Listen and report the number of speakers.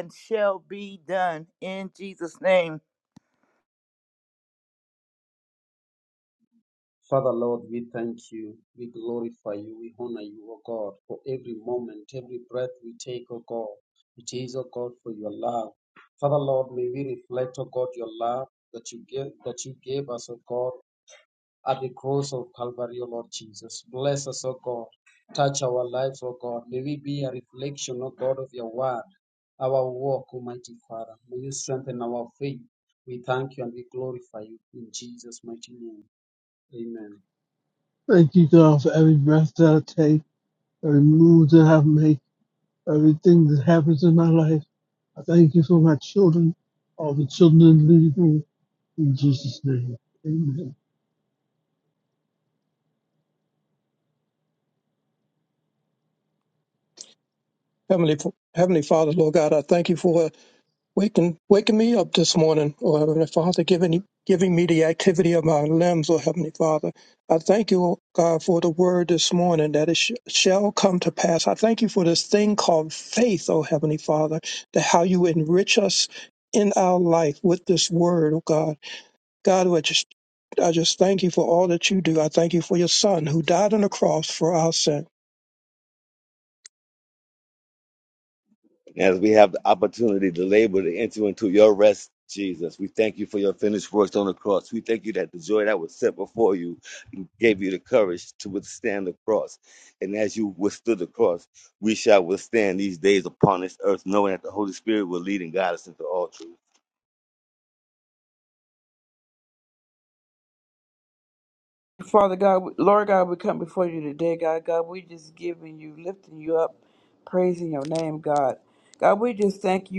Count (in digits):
6